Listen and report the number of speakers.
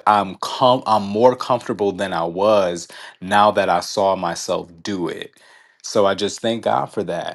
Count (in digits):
1